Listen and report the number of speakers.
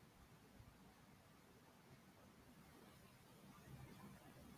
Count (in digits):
0